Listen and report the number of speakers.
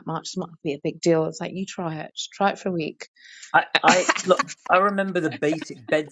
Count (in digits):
2